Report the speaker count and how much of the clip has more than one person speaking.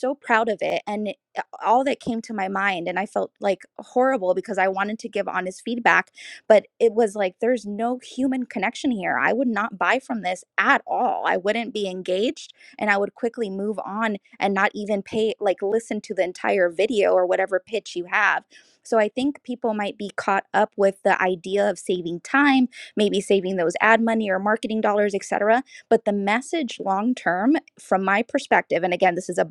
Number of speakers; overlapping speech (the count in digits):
1, no overlap